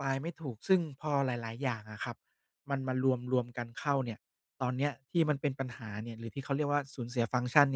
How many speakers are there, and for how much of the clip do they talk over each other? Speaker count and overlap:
1, no overlap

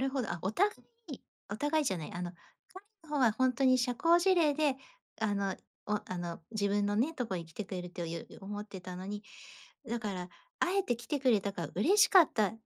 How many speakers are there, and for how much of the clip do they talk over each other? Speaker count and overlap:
1, no overlap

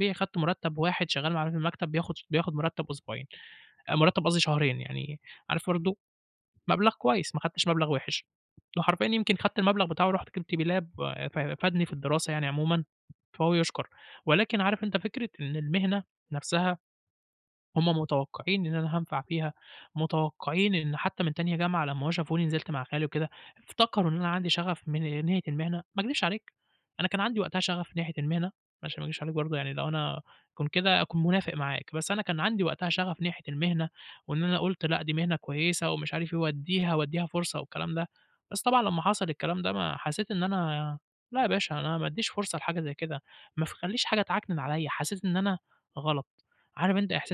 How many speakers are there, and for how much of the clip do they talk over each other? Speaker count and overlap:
1, no overlap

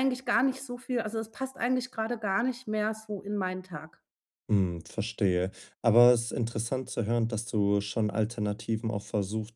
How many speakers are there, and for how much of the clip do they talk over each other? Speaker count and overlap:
2, no overlap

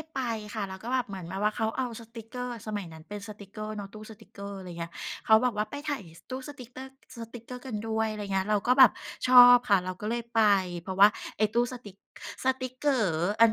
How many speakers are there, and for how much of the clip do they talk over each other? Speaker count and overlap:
1, no overlap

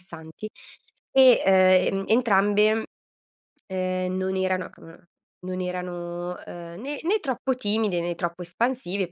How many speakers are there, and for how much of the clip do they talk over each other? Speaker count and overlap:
1, no overlap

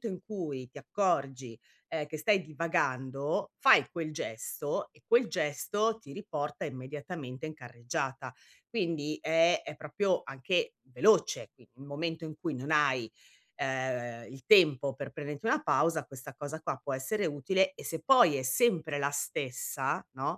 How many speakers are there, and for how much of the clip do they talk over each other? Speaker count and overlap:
1, no overlap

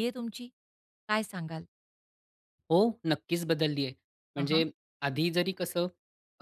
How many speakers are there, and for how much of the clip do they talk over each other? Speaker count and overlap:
2, about 4%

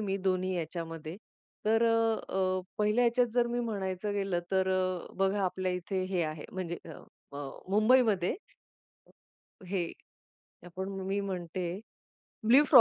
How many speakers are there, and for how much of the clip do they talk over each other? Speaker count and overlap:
1, no overlap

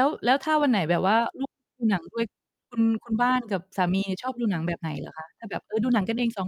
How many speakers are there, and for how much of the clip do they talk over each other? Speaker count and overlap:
1, no overlap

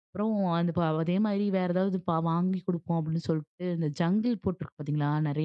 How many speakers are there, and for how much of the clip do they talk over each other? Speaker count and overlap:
1, no overlap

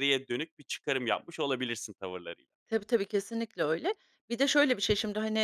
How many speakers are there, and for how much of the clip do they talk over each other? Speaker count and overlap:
2, no overlap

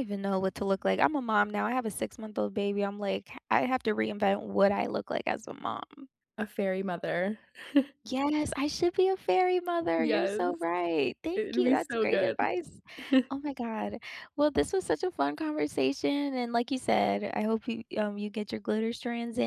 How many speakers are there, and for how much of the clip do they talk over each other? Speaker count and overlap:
2, about 8%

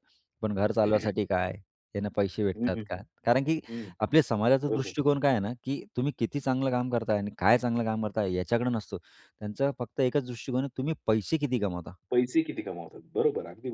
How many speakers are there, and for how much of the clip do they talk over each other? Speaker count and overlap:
2, about 5%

